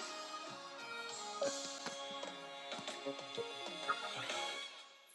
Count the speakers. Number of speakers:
0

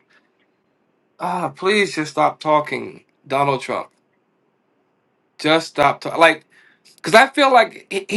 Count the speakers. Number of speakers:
1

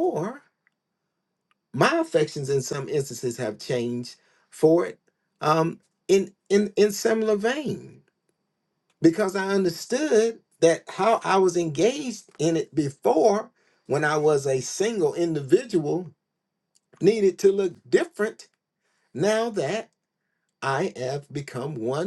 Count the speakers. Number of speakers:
1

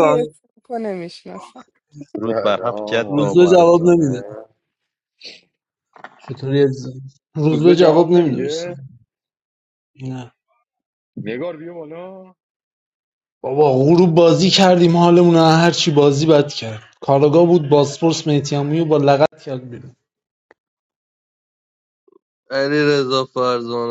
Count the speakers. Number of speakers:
4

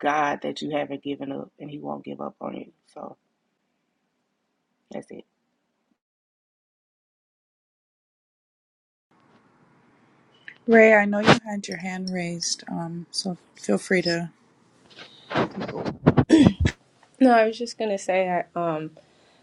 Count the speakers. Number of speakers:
3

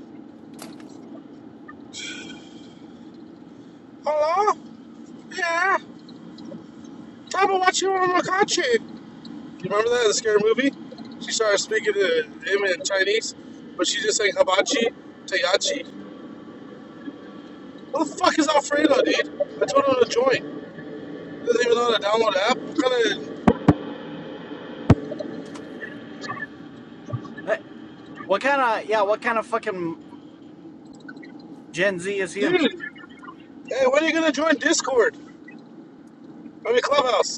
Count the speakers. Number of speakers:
2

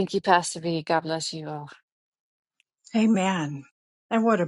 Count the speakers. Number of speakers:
2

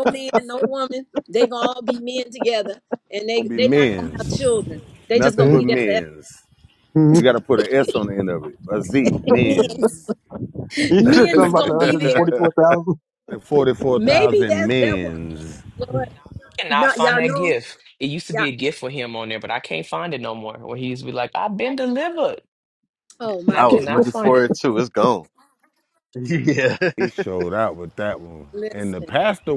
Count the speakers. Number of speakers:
5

